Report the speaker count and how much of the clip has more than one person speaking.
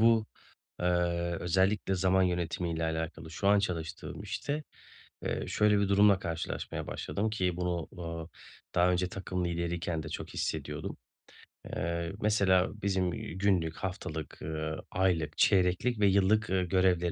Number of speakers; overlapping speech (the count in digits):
1, no overlap